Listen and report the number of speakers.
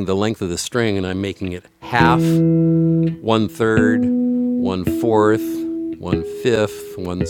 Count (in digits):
1